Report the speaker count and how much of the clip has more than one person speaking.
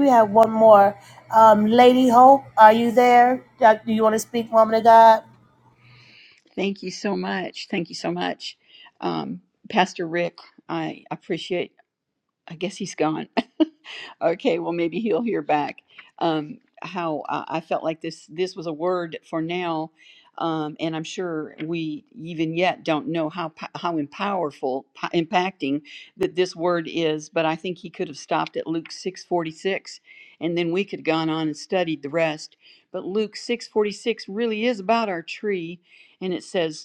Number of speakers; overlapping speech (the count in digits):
2, no overlap